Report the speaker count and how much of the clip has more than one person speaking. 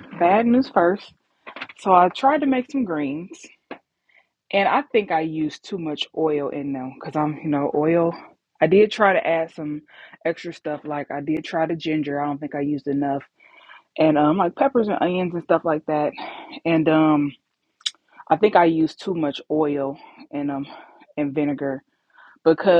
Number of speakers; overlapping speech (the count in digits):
1, no overlap